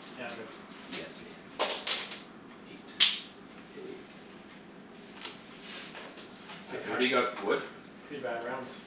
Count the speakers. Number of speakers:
two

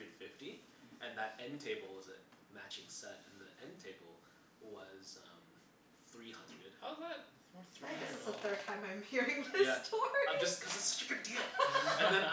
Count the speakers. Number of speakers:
three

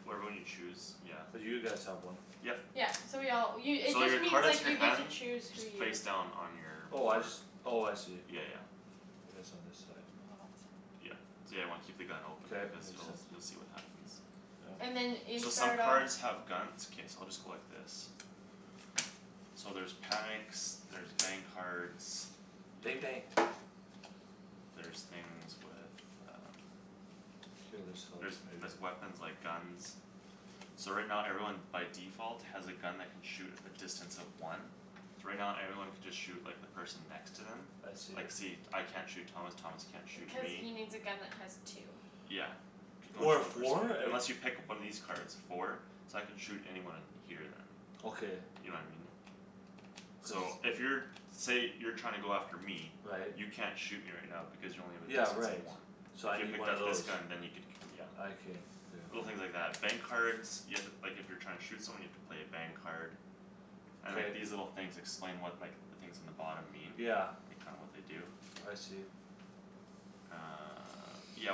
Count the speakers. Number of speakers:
three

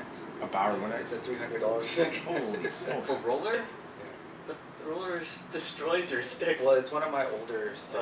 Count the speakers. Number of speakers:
three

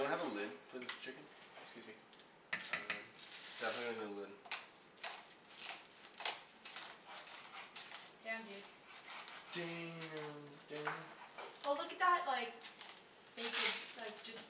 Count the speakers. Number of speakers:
three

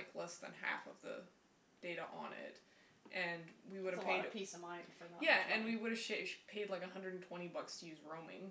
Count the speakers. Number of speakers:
two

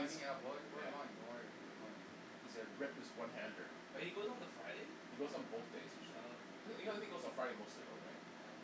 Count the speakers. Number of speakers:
three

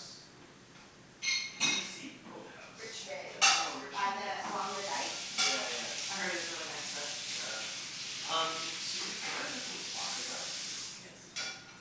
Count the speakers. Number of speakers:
four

